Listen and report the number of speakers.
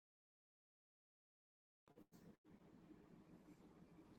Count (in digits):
0